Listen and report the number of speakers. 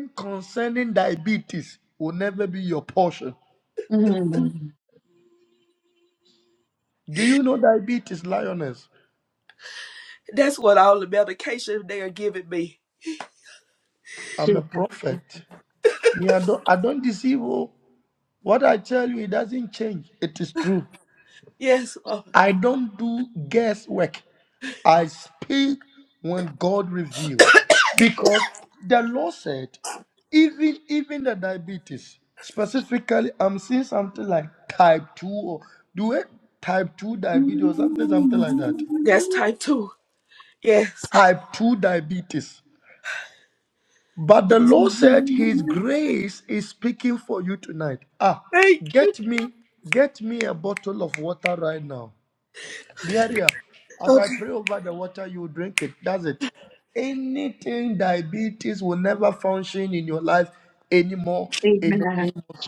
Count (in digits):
3